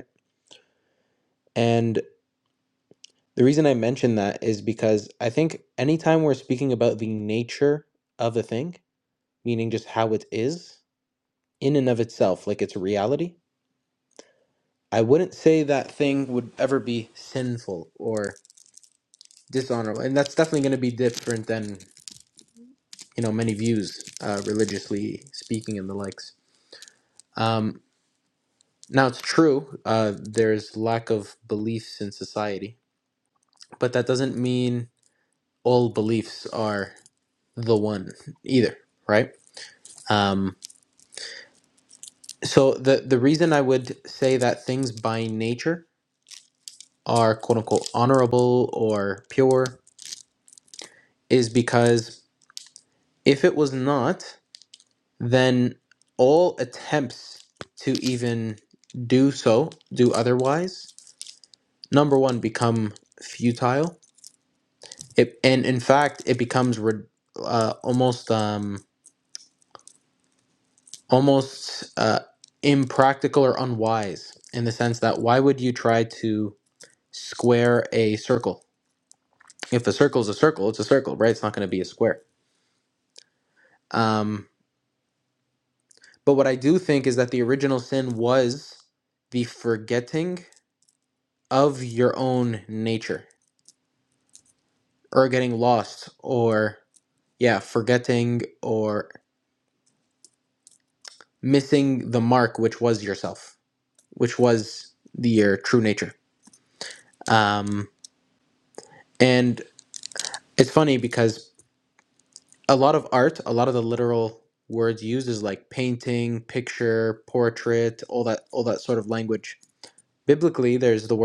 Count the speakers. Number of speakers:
one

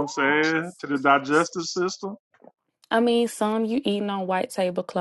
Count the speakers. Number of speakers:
two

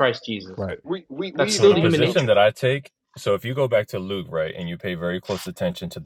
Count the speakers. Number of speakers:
three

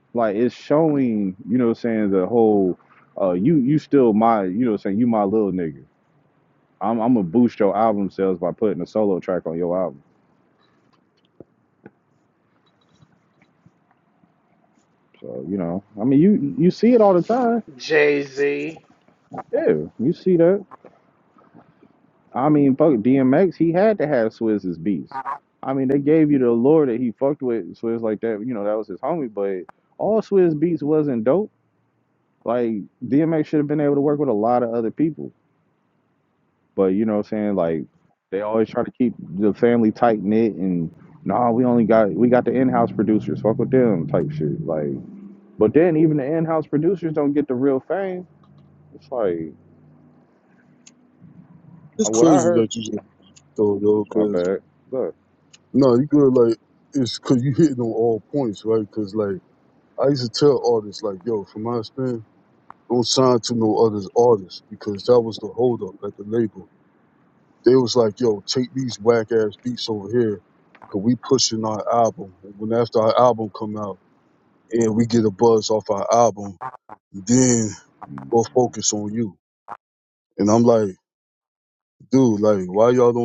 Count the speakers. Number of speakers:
three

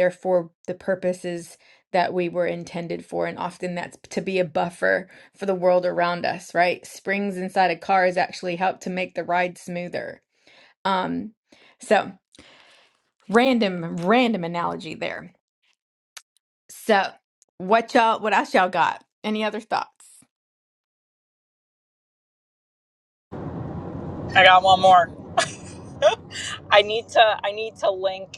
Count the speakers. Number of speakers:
two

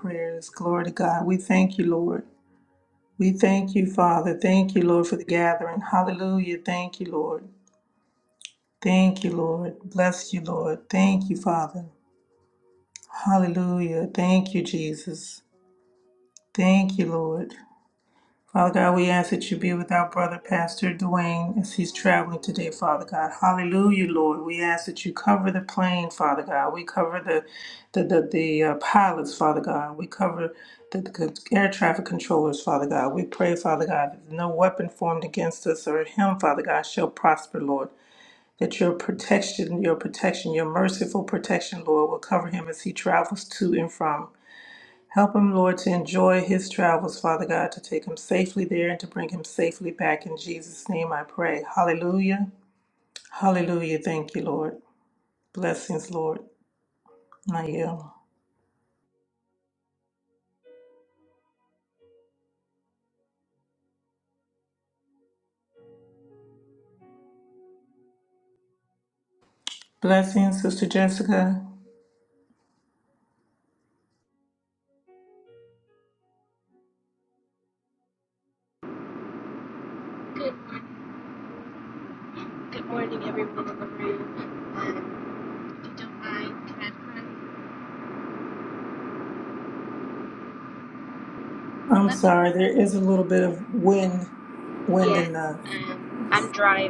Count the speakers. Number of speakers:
two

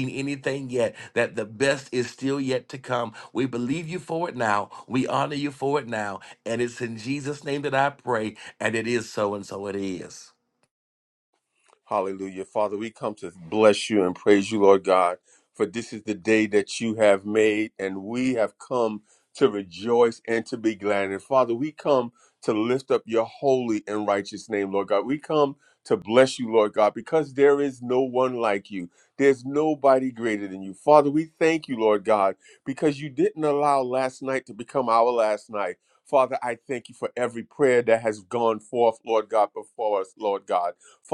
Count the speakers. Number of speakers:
two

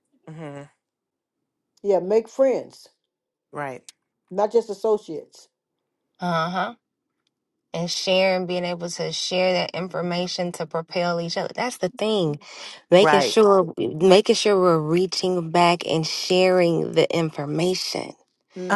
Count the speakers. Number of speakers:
three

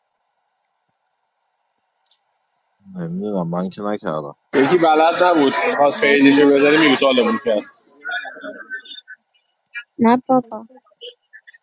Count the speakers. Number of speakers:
three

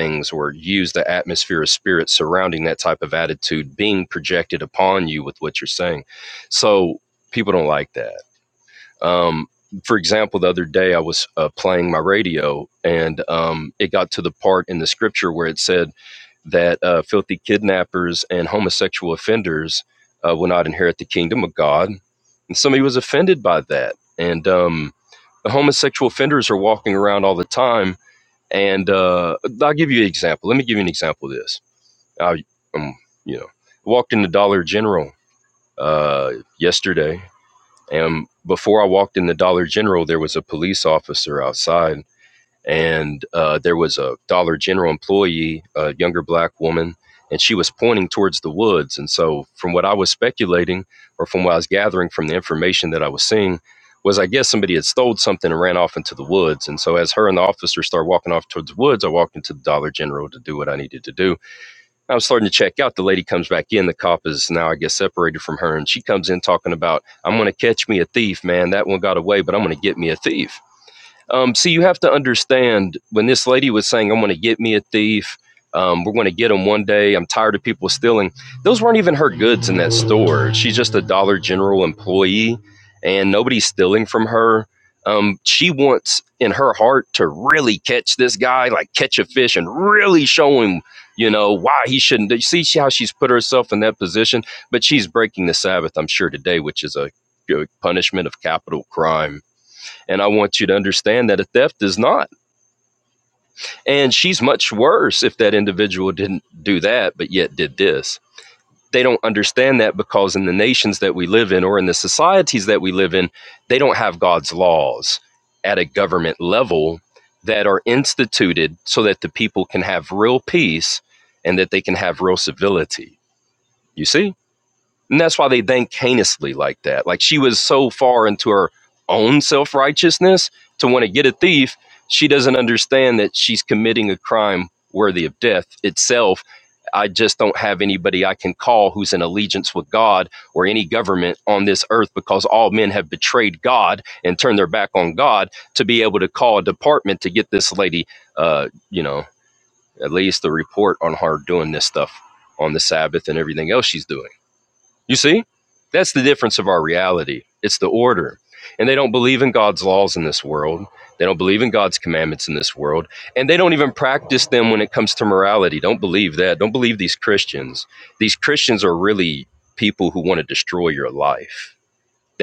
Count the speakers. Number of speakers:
one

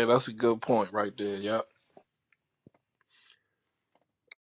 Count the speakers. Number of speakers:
one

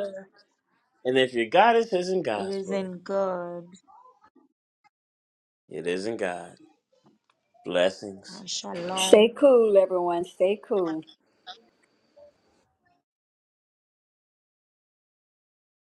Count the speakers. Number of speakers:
three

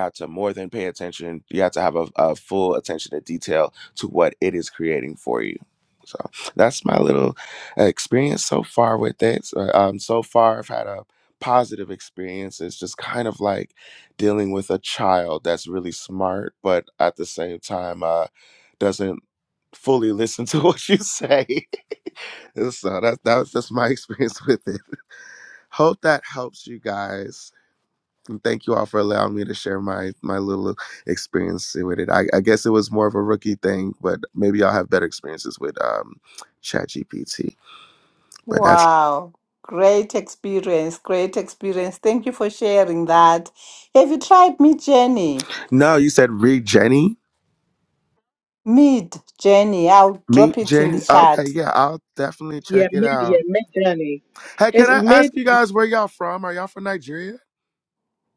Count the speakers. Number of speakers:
three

